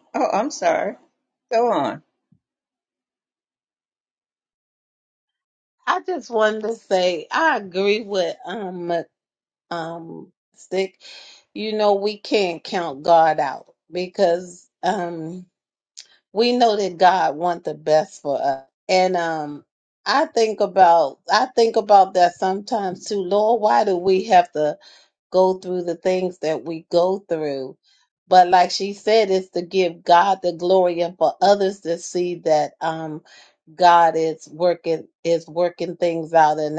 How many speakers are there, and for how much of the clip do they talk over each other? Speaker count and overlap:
two, no overlap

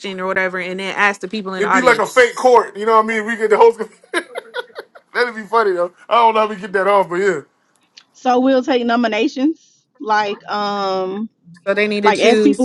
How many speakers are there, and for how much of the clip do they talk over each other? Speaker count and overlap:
three, about 8%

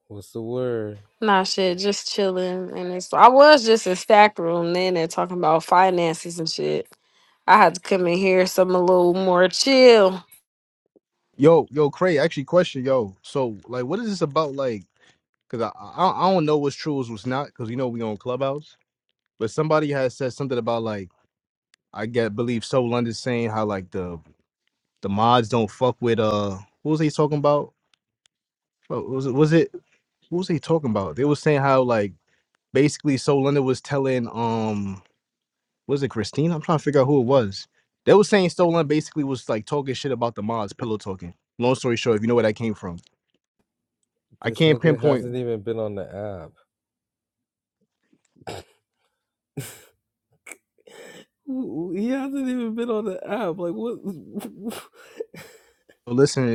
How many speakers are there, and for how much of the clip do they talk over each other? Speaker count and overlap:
three, about 1%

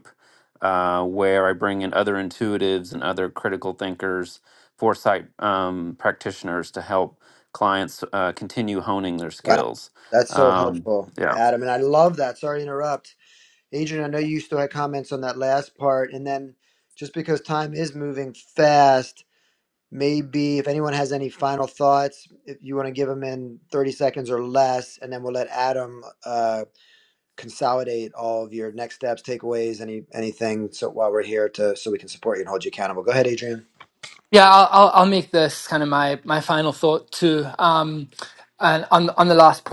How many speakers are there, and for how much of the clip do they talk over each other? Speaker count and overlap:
three, about 2%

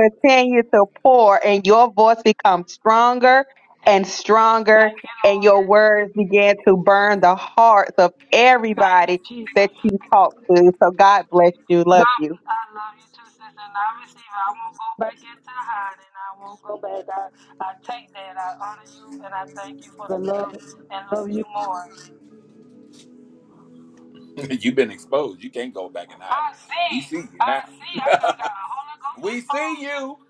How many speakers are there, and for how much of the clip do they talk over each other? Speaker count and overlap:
three, about 14%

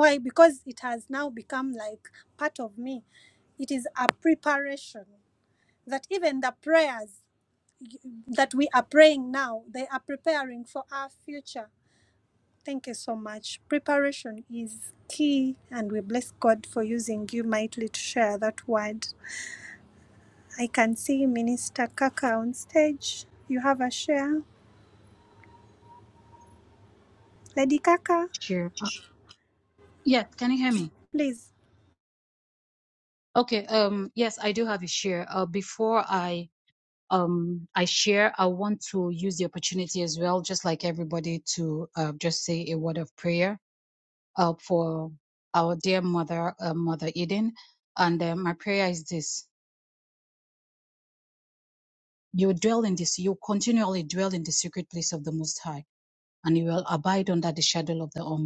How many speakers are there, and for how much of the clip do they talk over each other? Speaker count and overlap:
two, no overlap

